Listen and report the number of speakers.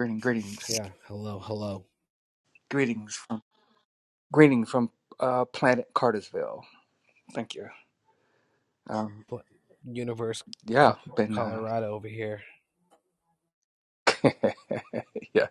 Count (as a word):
two